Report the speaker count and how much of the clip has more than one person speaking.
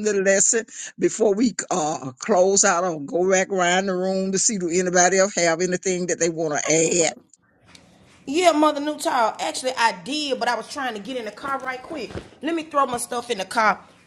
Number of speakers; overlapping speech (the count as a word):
two, no overlap